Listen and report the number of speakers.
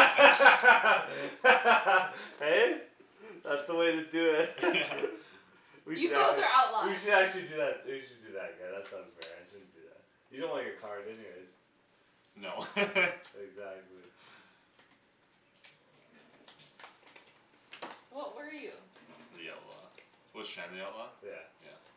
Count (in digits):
3